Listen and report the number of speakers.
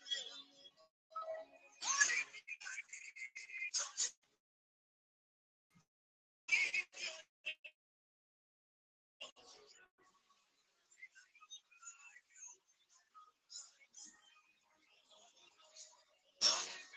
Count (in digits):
0